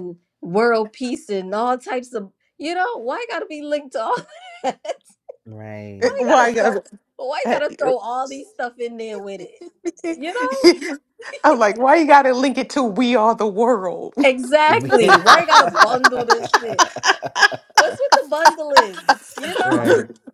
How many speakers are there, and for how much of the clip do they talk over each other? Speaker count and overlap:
3, about 10%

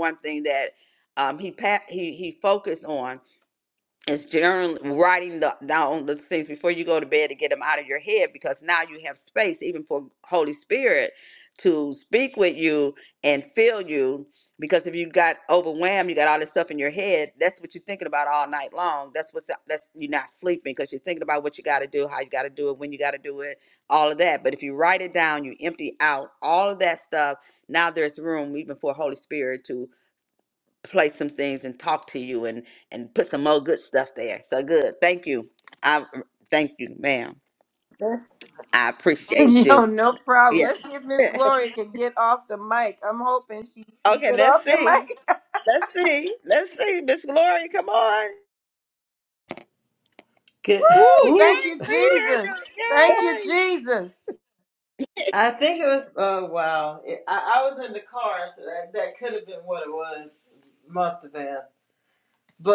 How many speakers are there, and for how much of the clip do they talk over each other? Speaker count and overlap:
3, about 7%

